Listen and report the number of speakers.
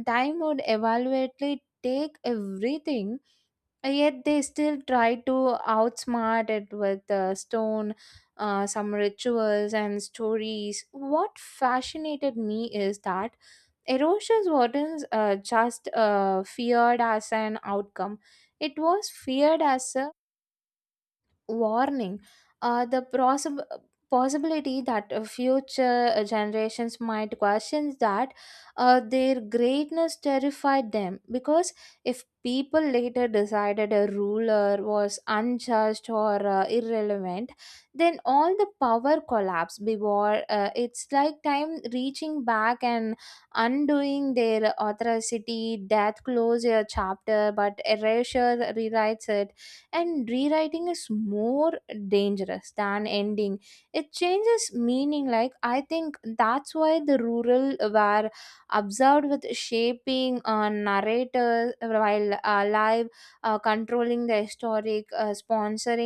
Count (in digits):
1